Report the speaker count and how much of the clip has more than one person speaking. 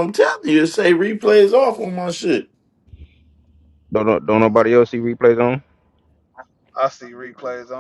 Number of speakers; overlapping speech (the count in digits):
3, about 6%